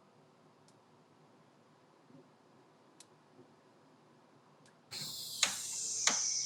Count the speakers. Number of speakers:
0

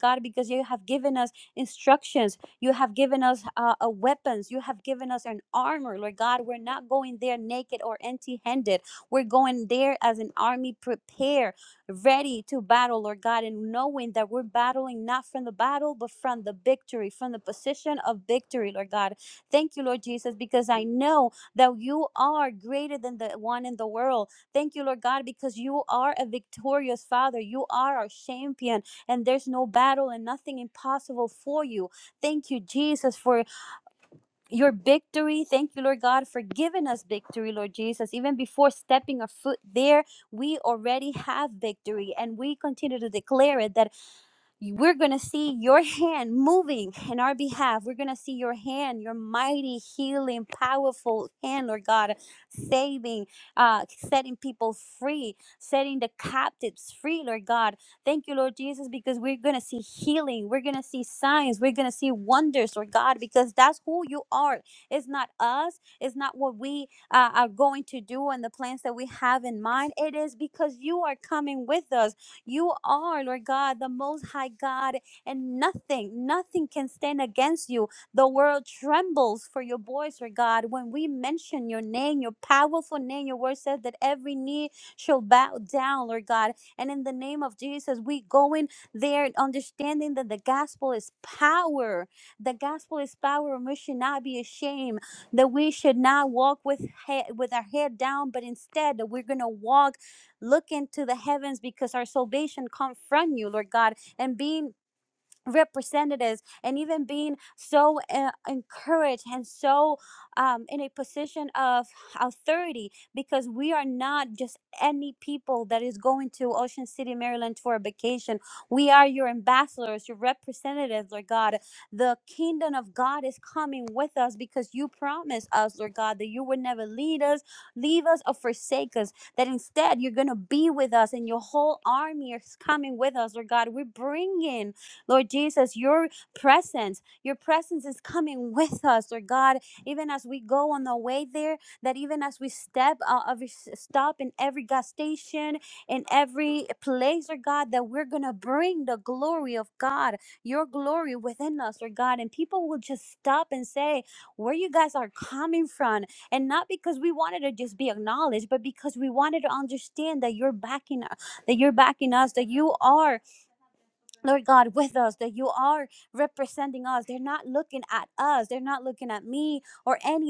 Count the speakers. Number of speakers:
1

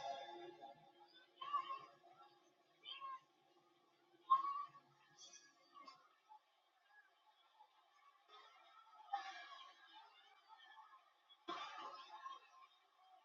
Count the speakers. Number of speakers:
0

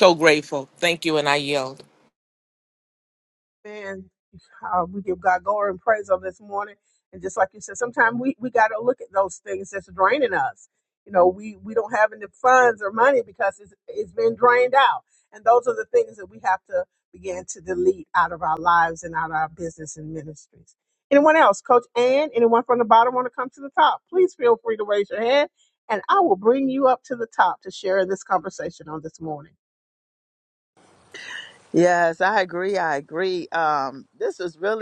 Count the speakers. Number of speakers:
3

